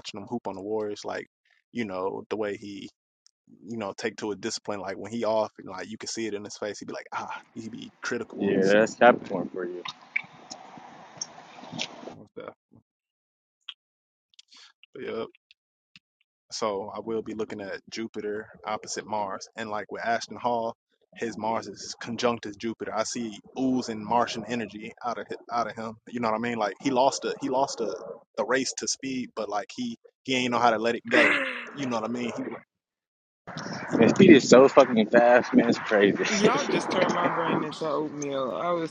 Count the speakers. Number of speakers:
3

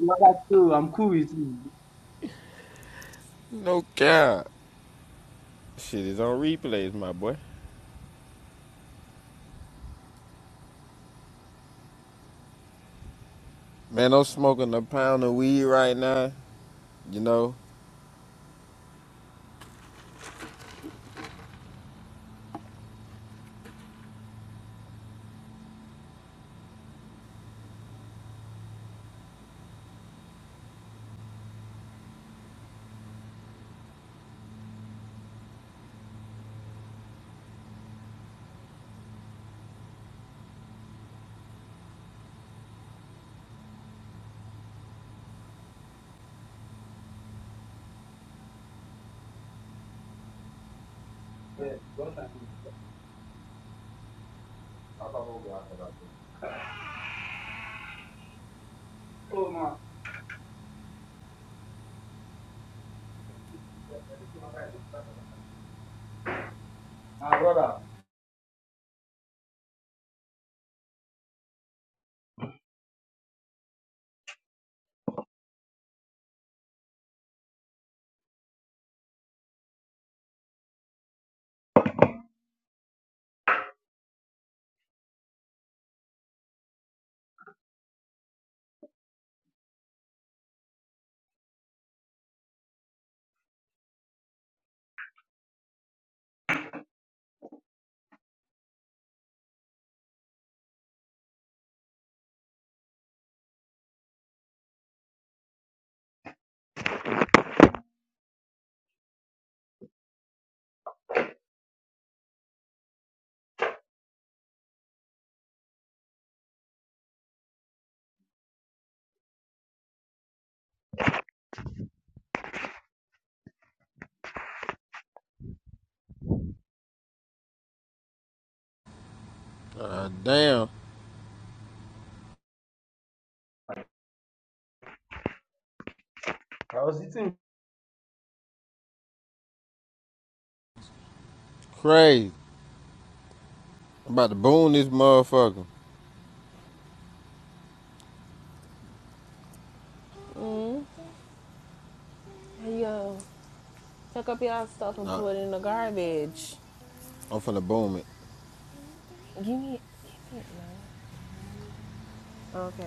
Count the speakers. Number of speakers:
3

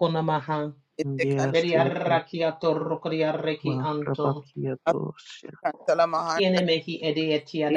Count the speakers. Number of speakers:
3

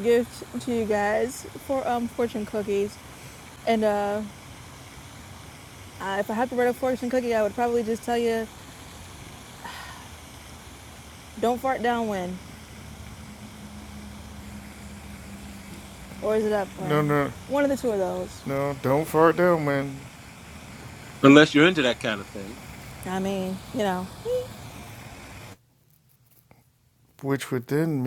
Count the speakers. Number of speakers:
3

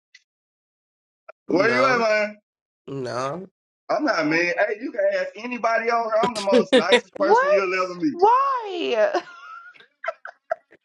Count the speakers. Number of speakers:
3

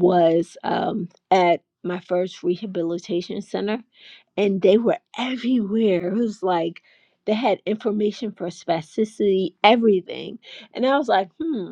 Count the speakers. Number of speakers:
1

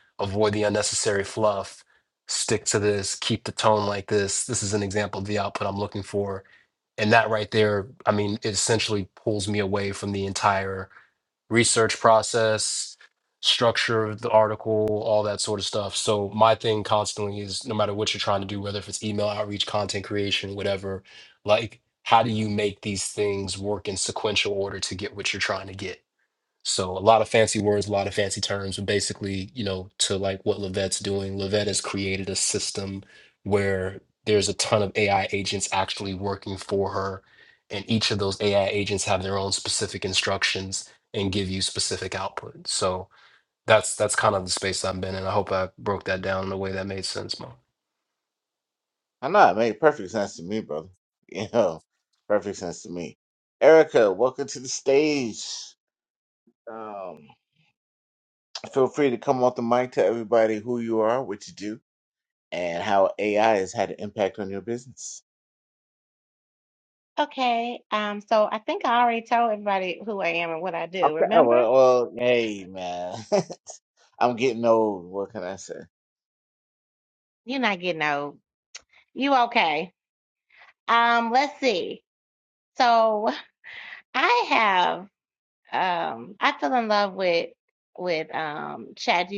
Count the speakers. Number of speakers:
3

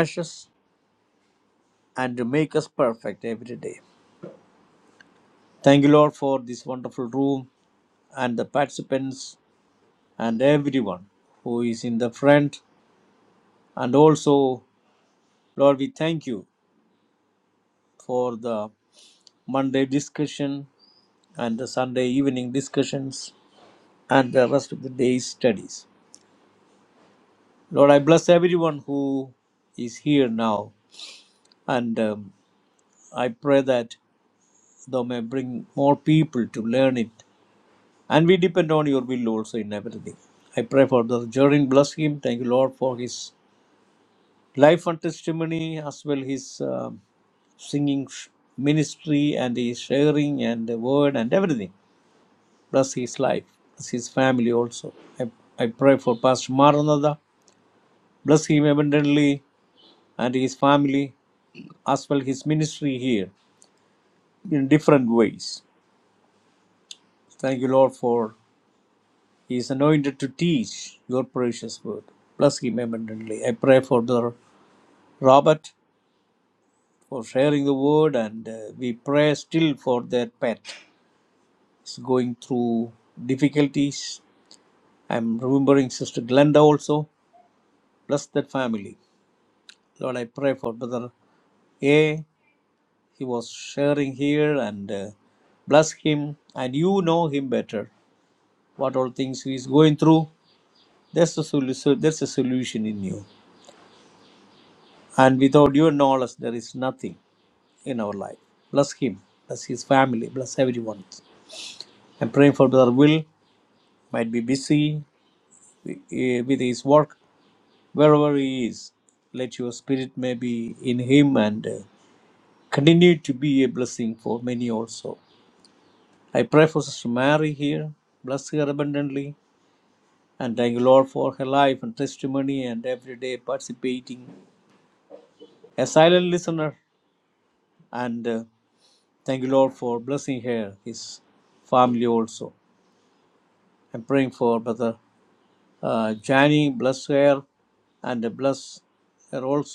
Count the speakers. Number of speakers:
1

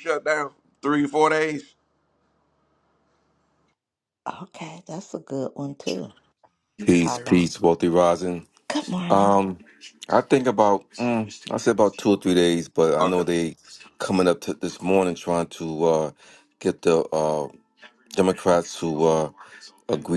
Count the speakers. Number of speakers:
3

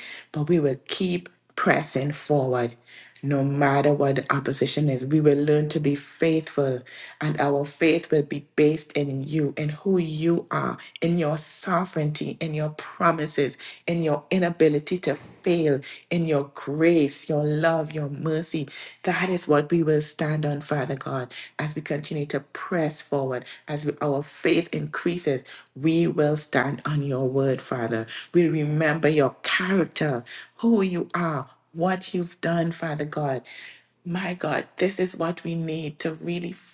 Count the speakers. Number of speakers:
1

